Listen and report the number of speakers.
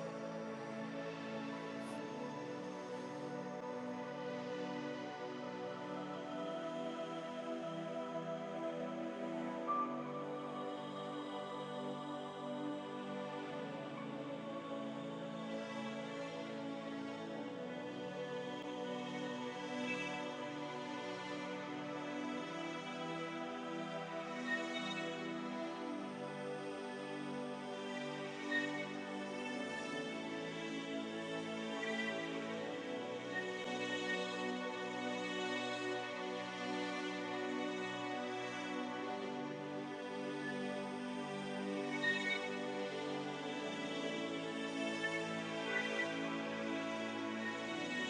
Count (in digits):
0